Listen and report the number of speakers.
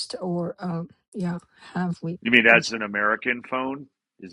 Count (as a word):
two